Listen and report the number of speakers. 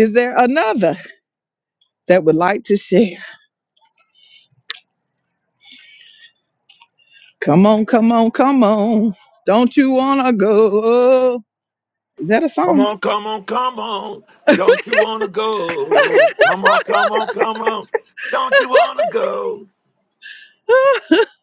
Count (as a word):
two